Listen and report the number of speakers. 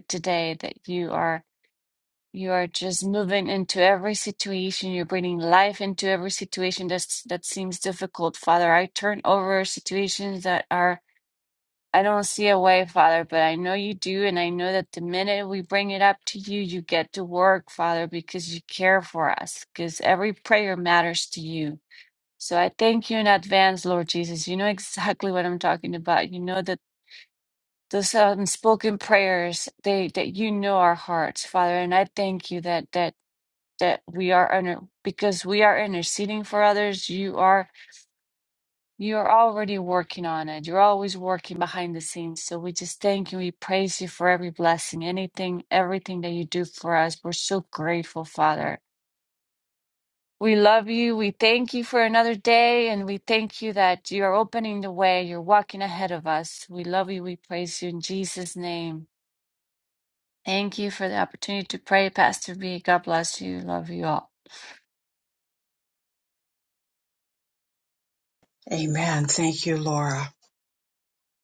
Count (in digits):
2